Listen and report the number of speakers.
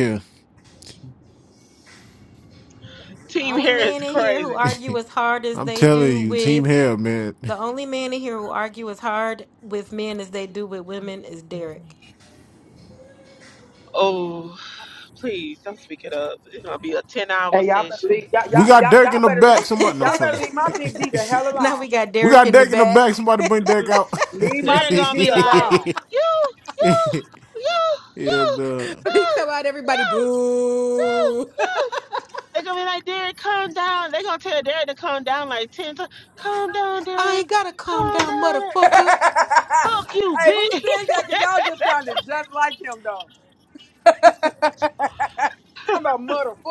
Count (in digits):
4